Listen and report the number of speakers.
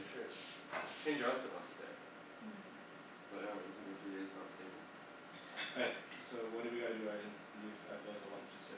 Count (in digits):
2